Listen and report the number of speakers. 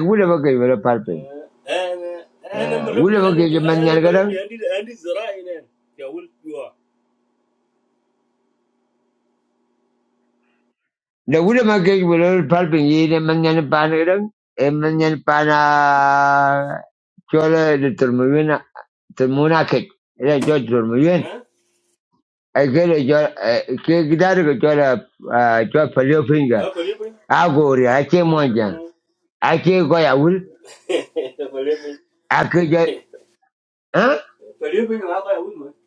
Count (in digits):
2